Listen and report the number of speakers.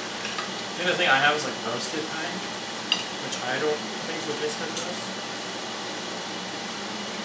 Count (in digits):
1